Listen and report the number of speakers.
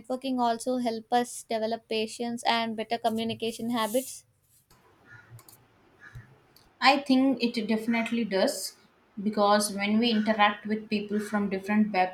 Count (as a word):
two